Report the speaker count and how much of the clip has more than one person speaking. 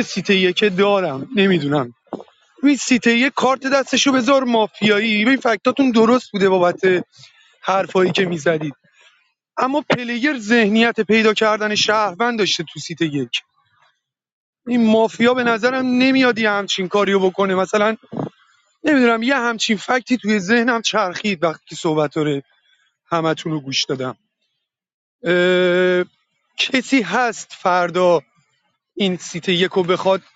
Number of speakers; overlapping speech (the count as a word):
one, no overlap